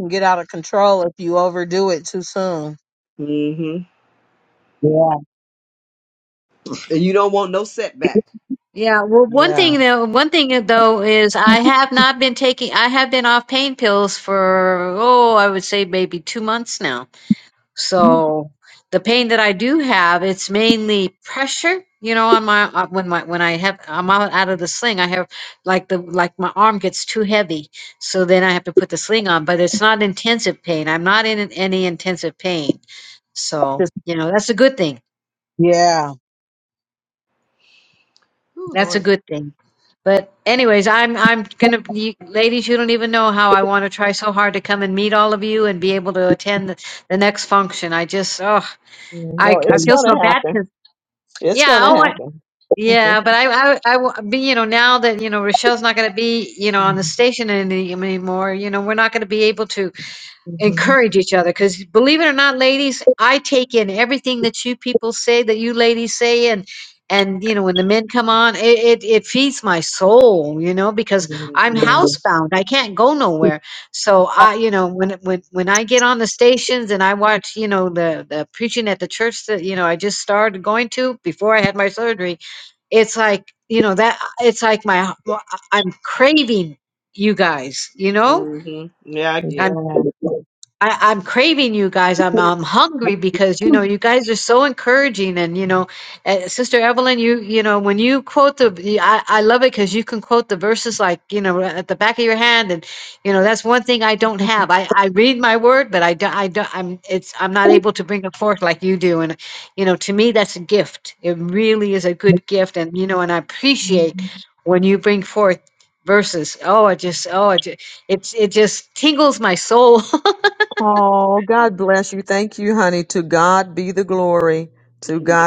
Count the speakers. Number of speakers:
four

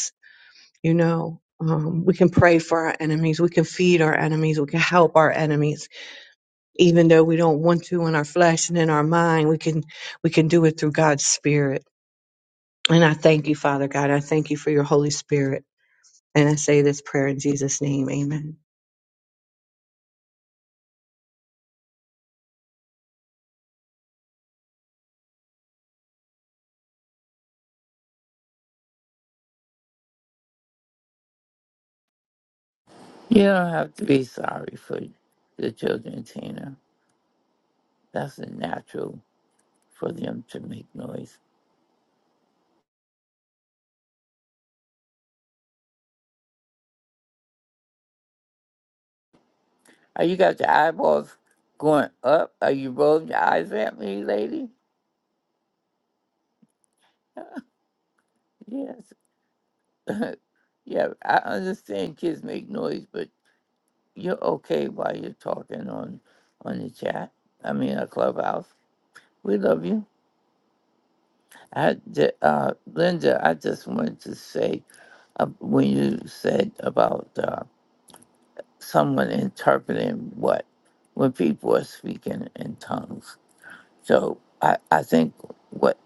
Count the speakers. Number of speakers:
two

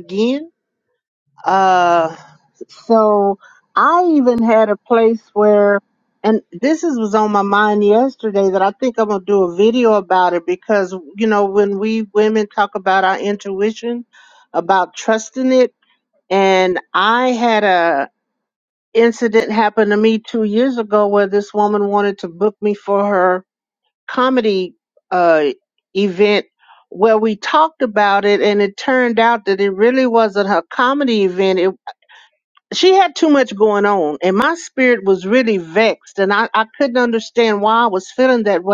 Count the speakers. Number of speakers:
one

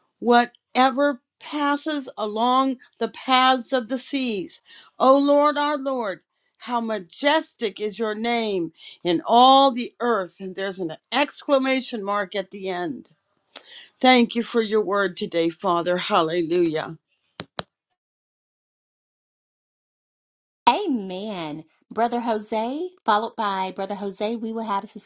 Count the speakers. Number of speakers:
two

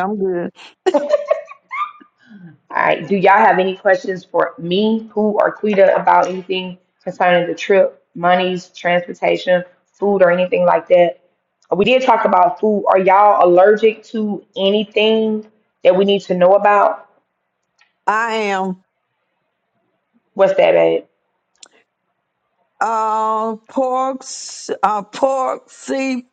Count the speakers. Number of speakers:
two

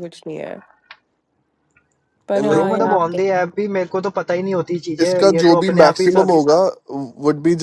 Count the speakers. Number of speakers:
three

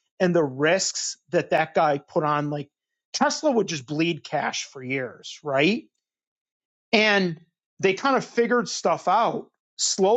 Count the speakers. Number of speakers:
one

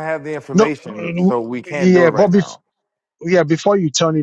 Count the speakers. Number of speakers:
two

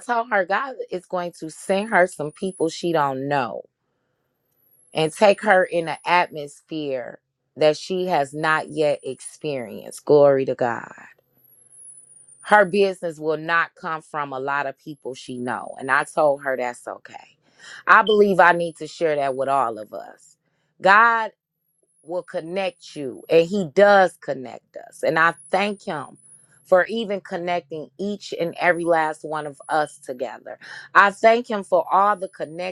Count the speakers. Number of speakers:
one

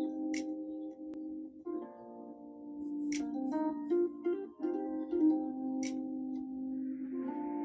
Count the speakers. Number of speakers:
zero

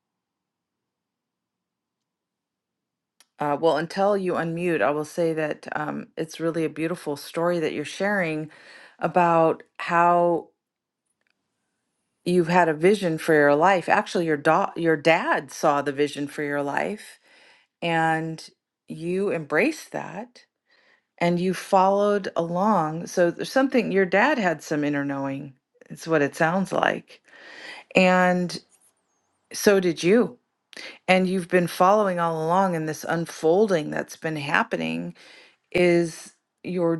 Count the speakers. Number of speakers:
one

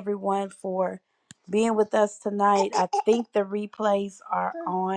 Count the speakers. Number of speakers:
one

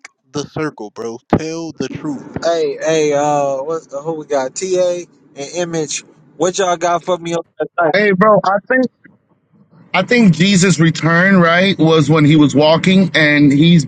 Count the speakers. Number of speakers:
three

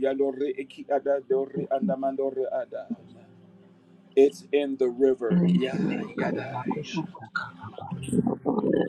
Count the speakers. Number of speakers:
three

